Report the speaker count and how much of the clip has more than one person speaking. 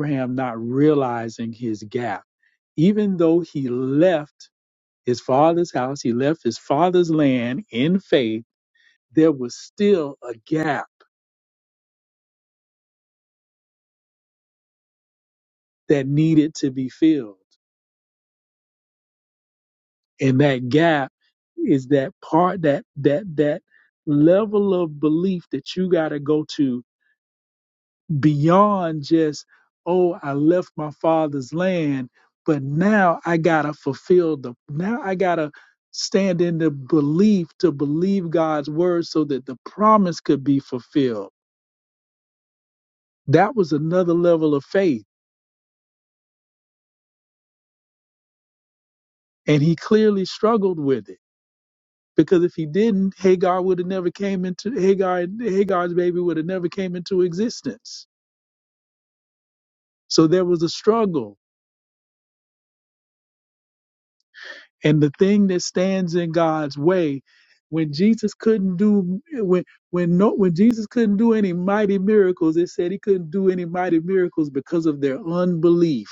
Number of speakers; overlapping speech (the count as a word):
one, no overlap